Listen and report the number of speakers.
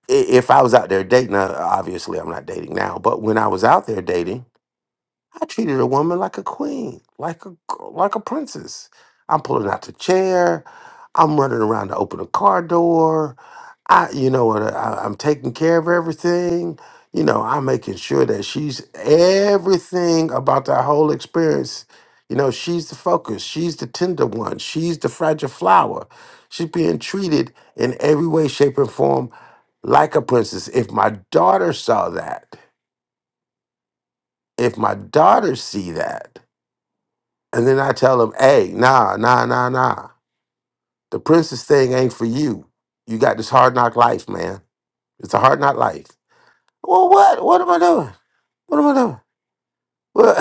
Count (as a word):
one